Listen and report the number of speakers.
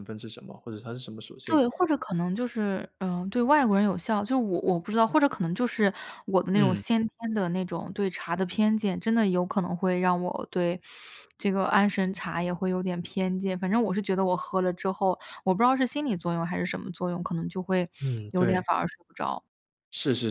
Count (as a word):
two